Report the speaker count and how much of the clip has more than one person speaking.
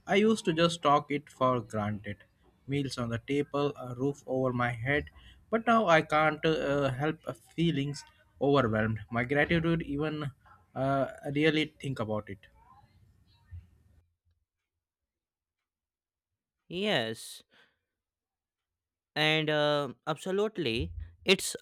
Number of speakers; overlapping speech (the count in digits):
2, no overlap